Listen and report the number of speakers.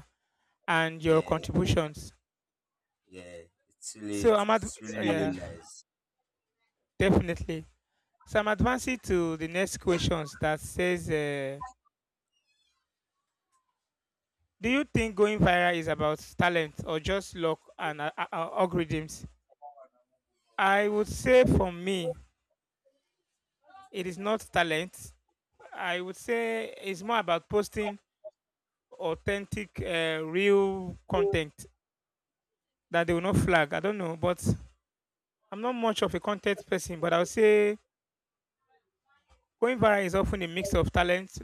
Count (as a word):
two